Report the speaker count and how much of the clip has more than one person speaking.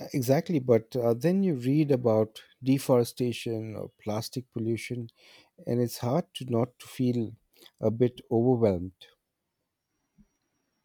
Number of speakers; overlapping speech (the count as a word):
one, no overlap